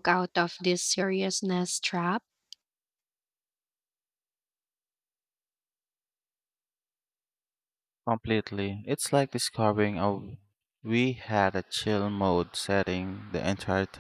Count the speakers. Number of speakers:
2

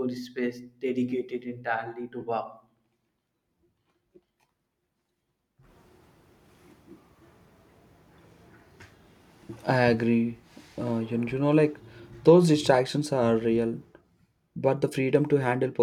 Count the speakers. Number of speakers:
2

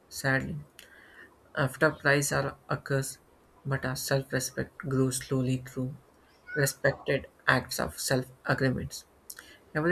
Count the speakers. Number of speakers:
1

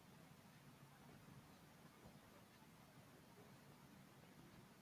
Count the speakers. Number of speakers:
0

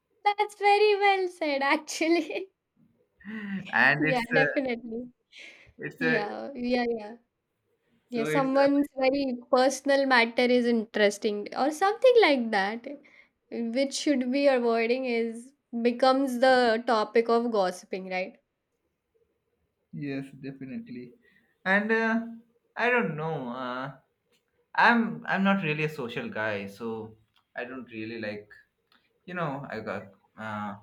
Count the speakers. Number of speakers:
2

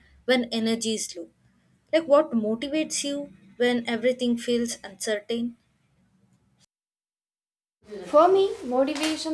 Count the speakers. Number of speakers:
2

